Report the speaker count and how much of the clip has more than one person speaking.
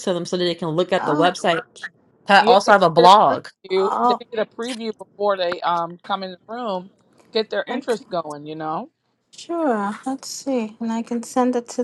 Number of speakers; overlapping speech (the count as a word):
three, about 18%